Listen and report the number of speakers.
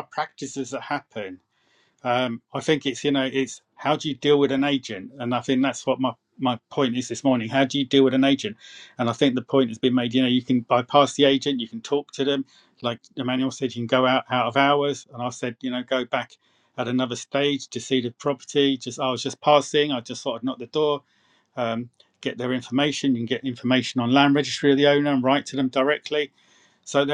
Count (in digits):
1